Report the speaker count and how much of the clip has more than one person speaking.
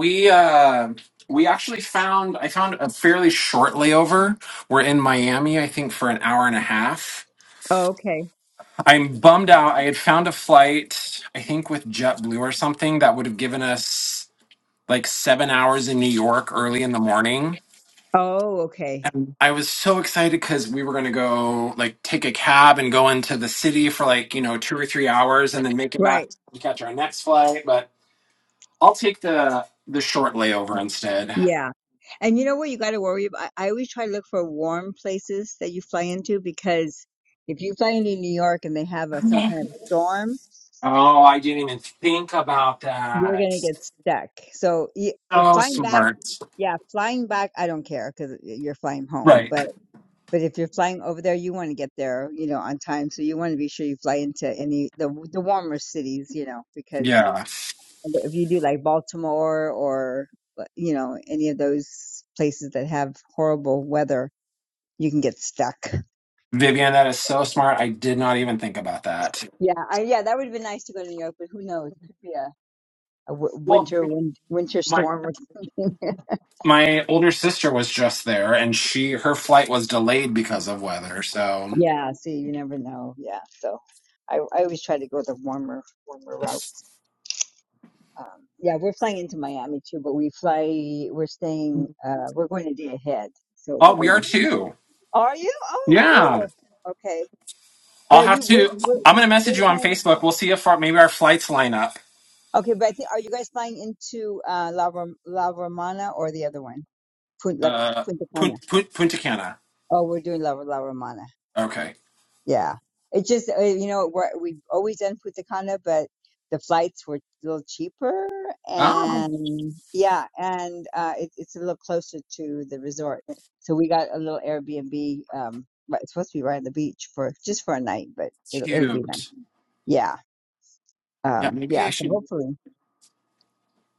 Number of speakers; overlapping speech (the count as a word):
two, about 5%